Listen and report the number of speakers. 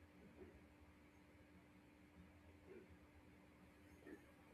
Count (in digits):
0